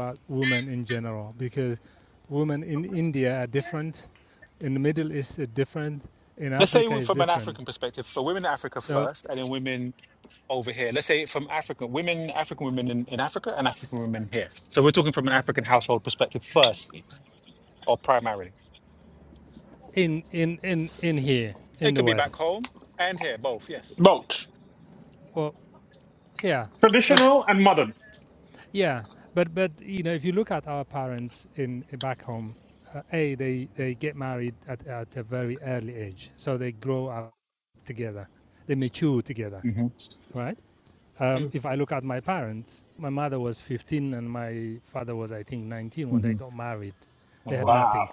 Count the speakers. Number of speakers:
3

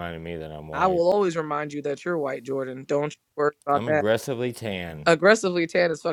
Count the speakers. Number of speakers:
2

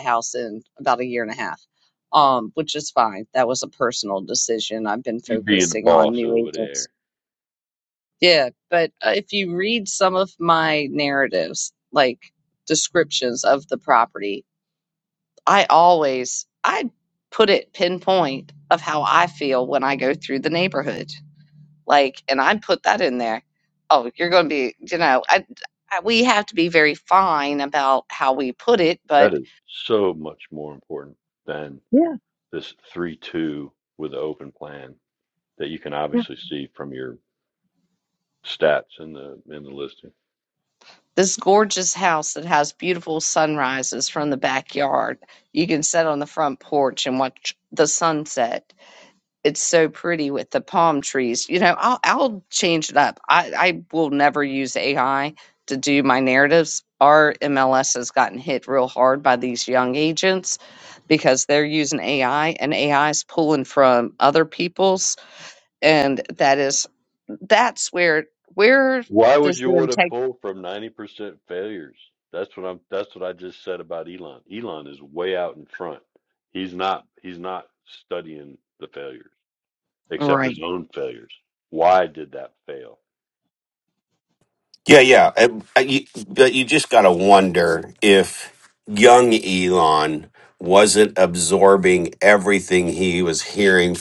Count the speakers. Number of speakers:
3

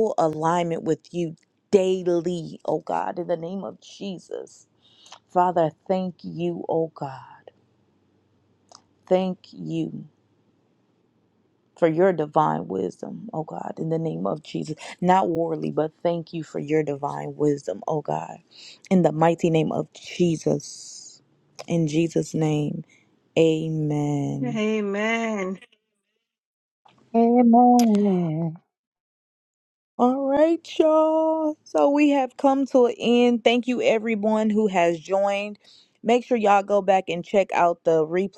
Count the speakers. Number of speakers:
3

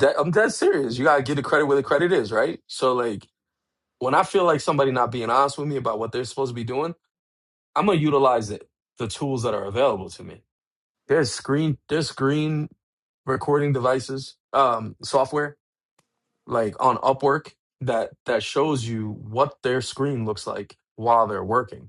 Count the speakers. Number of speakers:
1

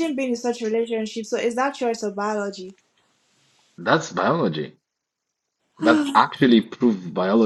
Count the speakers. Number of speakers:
2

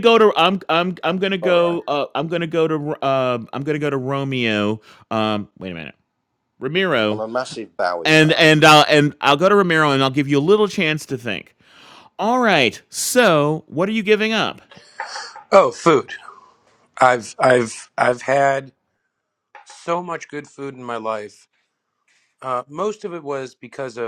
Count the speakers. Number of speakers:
3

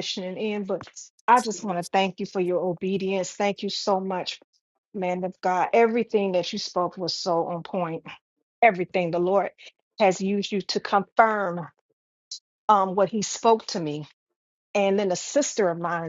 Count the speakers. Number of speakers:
1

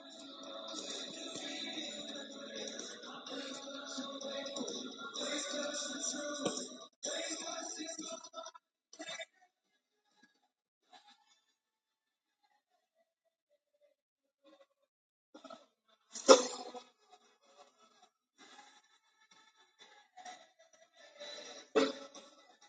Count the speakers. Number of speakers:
0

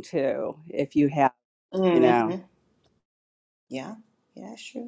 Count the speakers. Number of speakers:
2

